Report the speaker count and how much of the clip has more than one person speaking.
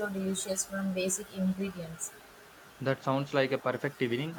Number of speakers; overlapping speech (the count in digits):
2, no overlap